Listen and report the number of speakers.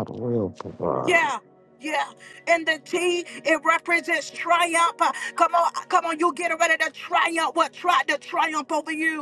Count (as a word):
two